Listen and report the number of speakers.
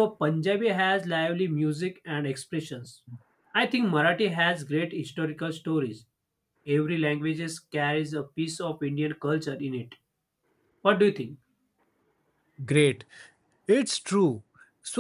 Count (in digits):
2